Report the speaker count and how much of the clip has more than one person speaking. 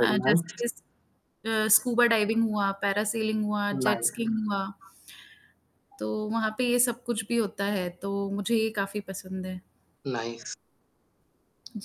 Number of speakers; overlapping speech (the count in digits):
2, about 9%